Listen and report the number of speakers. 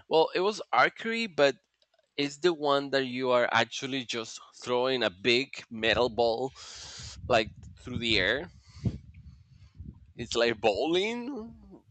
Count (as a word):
one